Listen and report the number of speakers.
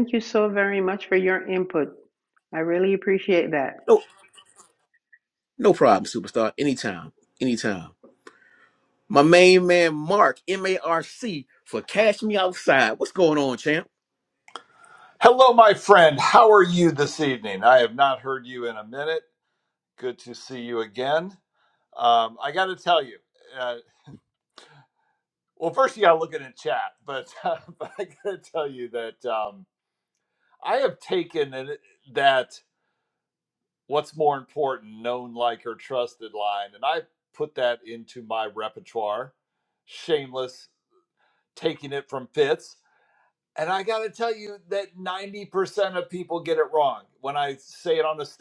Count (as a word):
three